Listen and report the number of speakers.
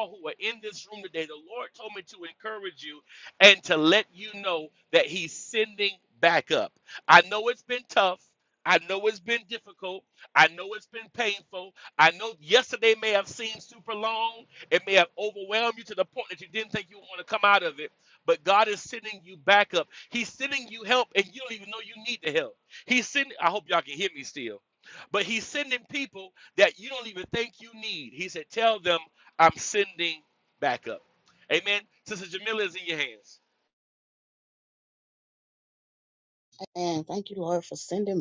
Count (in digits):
2